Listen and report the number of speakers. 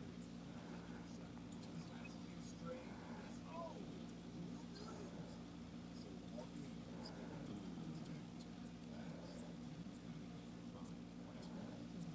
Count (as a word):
zero